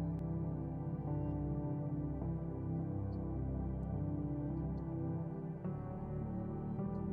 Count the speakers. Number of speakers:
zero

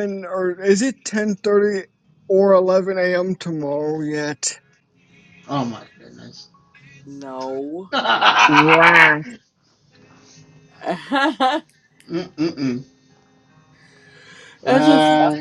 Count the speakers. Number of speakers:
three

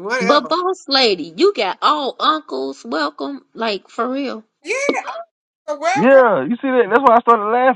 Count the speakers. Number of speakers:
three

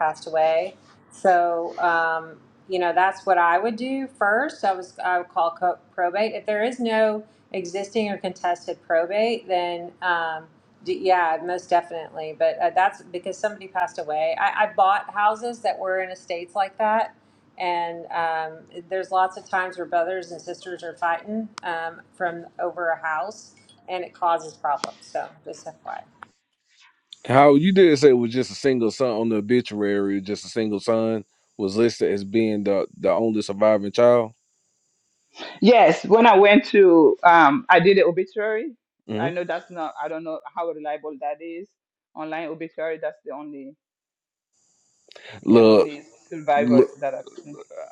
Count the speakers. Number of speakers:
three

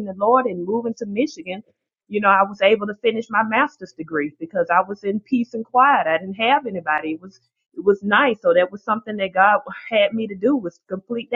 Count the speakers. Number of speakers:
one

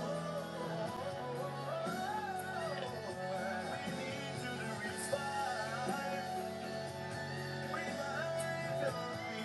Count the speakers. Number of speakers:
zero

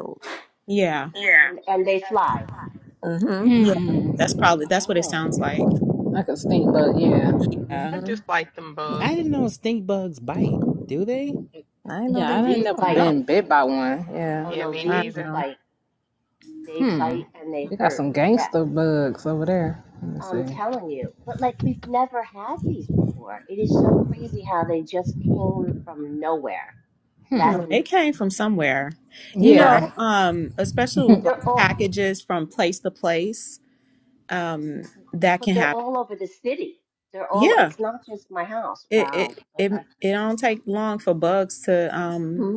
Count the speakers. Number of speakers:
six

